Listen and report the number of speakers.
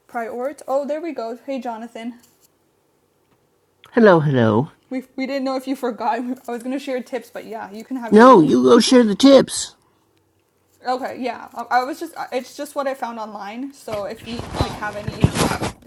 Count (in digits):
2